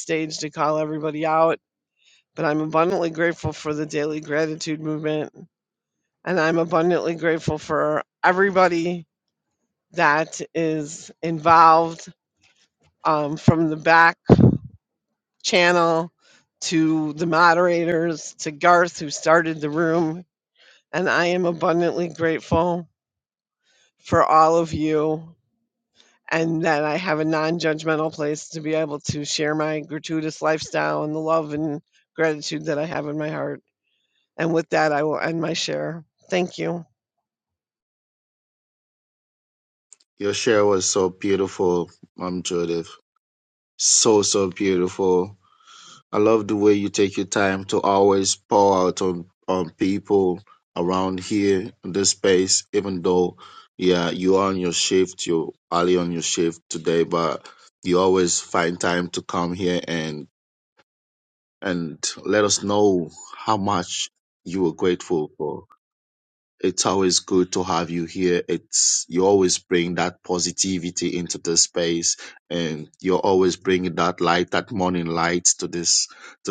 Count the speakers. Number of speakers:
two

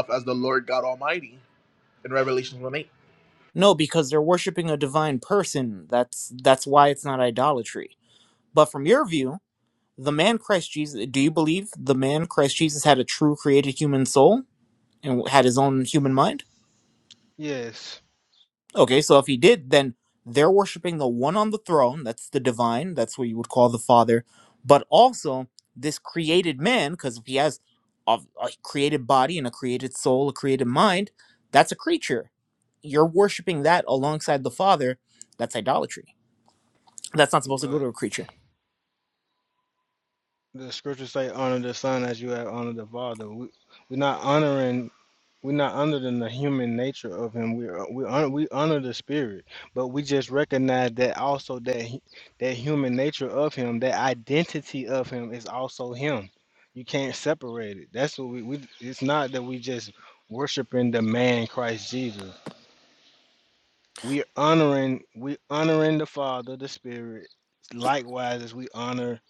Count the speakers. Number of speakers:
three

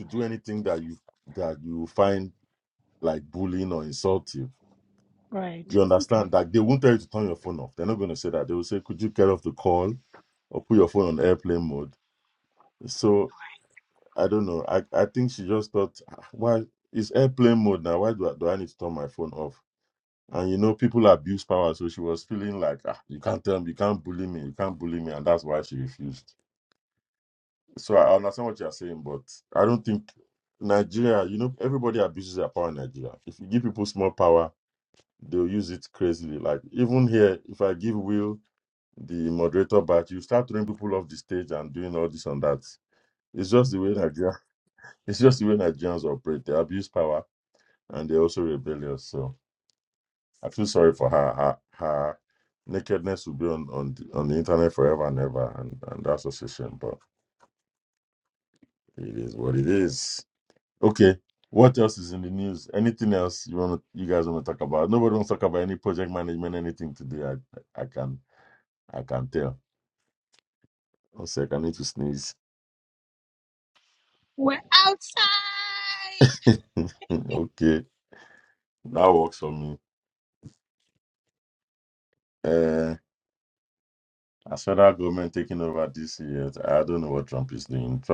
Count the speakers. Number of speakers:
two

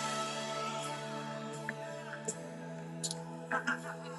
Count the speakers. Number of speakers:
zero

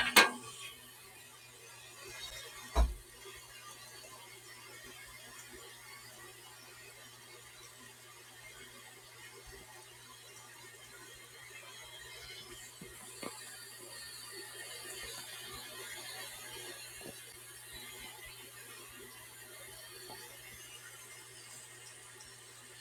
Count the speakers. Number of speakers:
zero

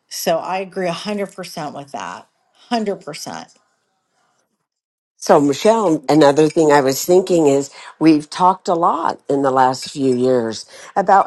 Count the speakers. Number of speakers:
two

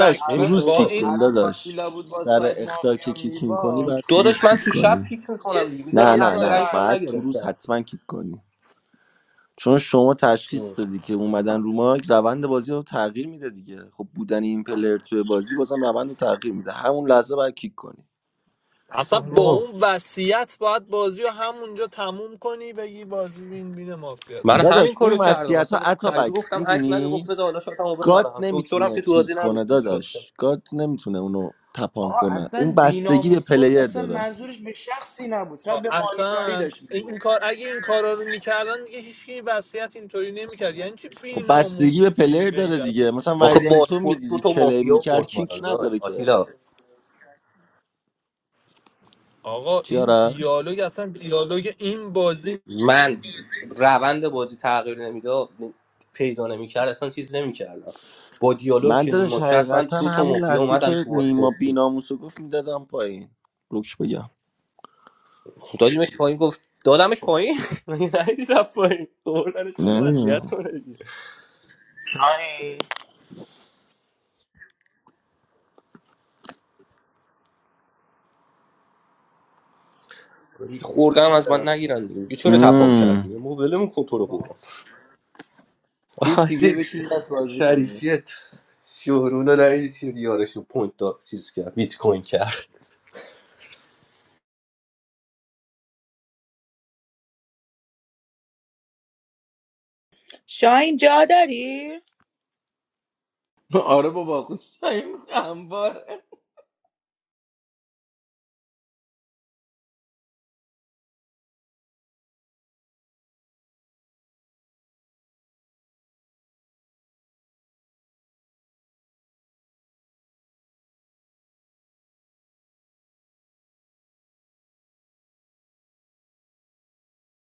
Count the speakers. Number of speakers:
five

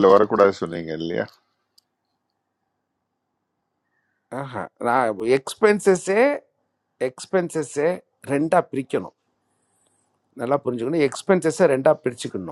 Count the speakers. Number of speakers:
two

